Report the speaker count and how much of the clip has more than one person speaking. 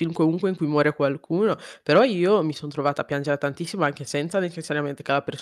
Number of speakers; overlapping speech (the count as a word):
one, no overlap